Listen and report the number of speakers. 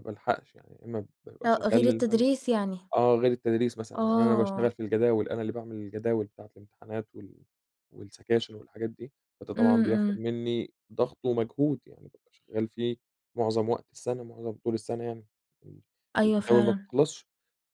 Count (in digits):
2